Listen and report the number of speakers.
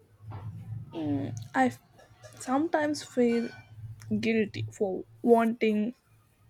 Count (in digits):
1